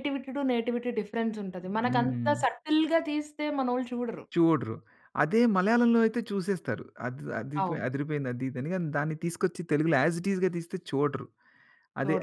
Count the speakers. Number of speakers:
2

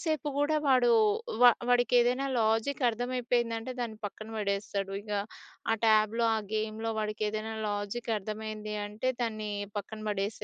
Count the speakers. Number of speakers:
1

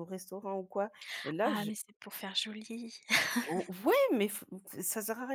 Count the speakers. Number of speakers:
2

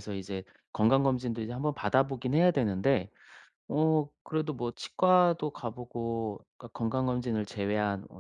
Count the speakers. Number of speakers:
1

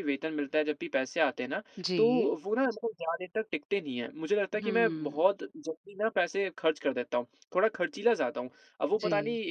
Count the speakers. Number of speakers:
2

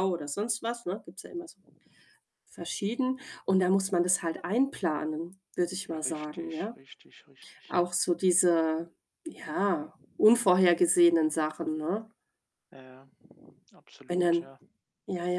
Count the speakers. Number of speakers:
2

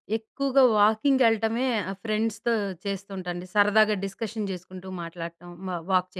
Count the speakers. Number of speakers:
1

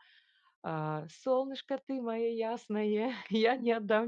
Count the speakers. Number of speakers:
1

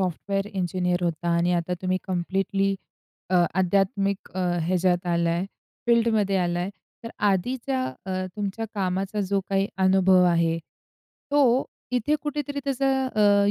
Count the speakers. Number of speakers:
1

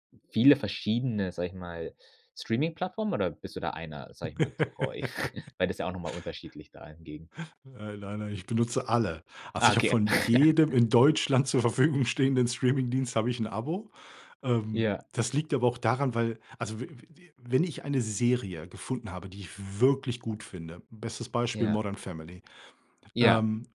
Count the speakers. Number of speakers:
2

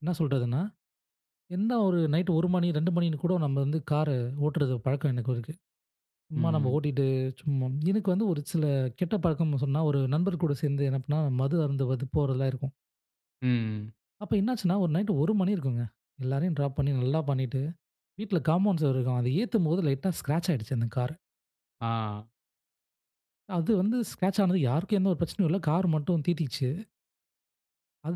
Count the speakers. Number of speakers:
2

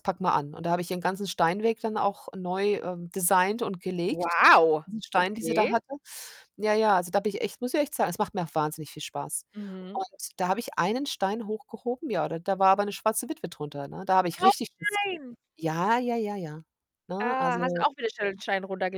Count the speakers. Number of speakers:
2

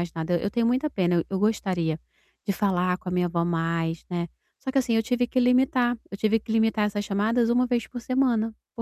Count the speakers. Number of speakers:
1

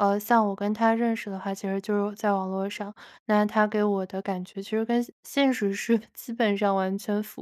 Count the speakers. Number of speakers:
1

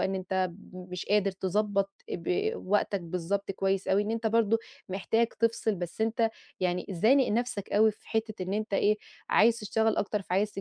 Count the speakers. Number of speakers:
1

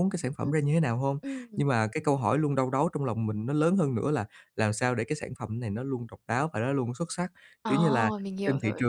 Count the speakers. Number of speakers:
2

